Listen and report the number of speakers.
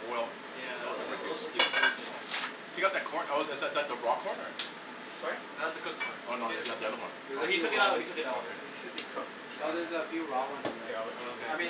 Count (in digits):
4